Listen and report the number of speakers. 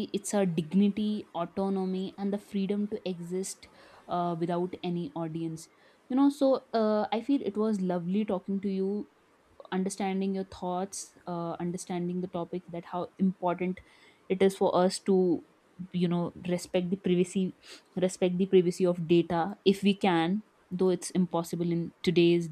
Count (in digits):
1